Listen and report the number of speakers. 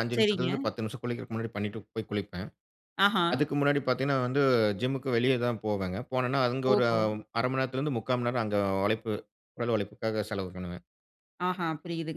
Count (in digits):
2